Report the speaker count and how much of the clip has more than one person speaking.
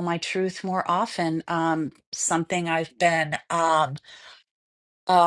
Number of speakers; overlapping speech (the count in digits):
1, no overlap